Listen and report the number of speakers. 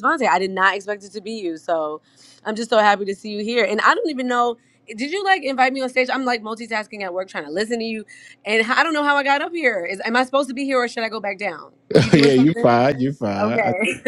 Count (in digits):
2